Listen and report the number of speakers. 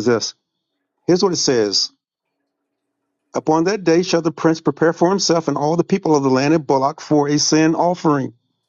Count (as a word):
one